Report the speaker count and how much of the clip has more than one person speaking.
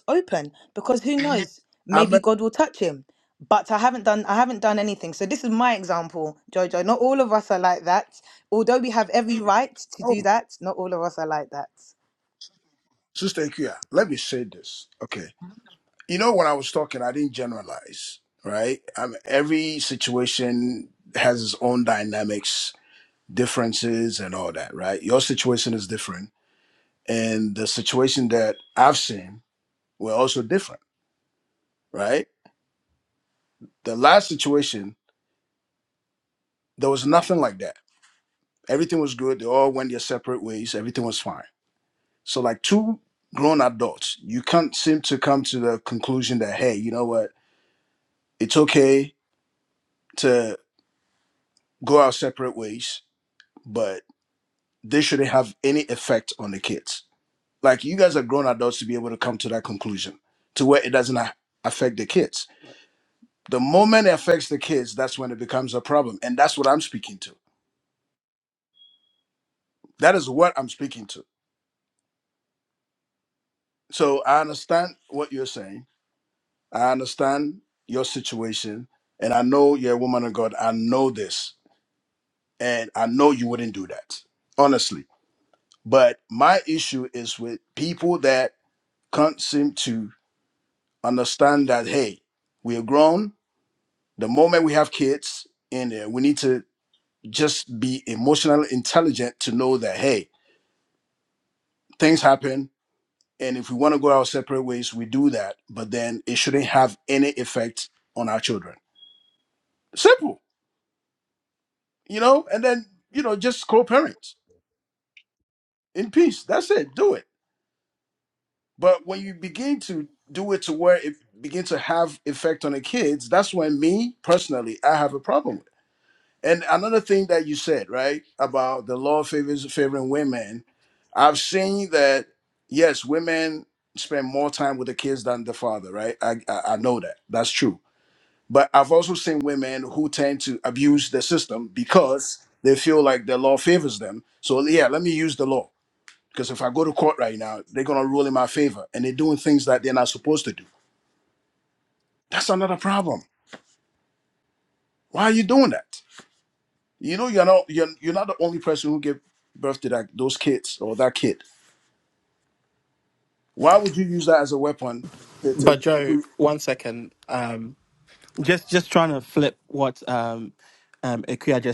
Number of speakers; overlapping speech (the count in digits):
3, under 1%